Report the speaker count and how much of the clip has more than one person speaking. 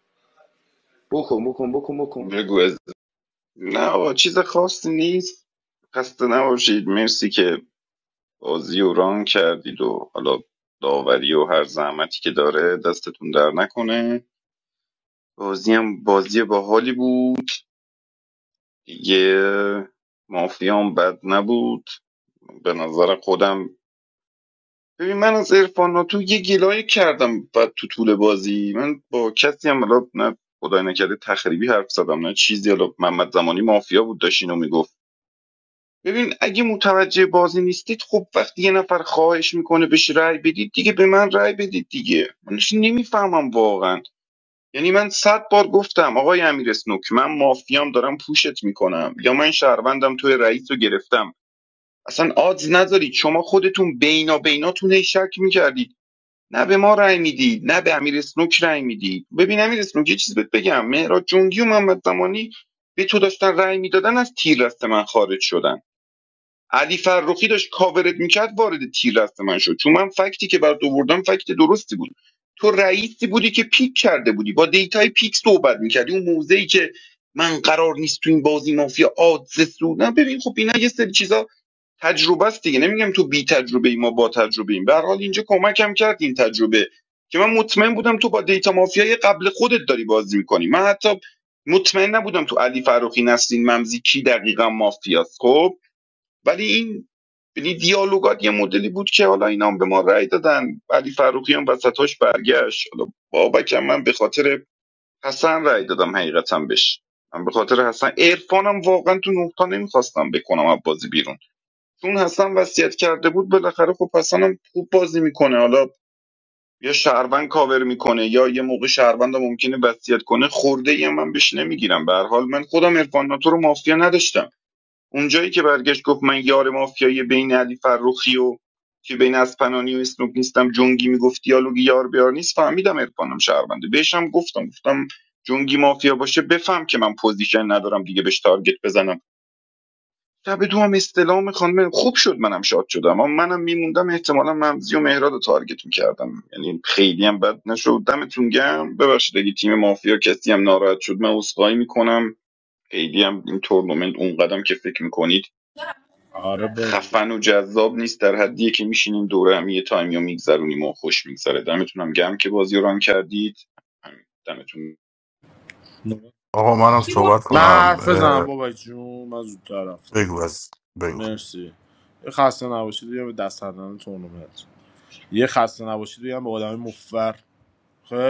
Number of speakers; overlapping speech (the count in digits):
4, about 1%